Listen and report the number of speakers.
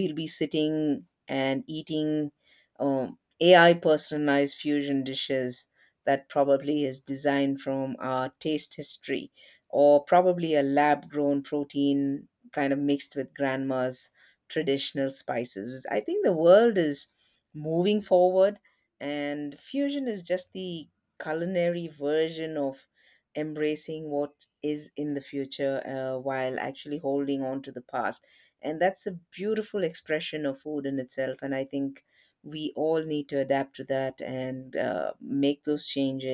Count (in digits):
1